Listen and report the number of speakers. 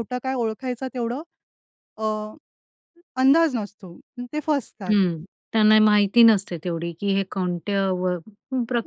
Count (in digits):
2